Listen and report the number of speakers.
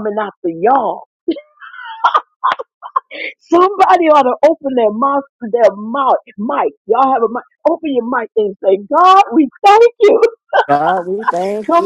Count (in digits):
2